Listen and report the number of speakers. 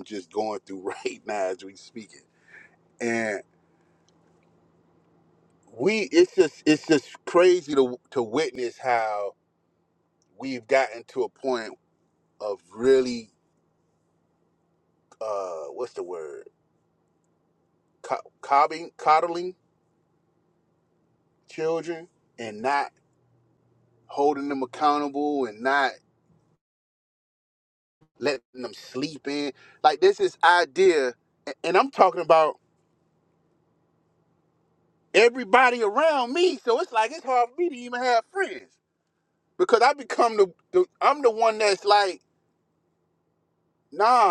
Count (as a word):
one